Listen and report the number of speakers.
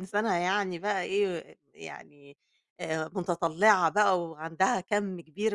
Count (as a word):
one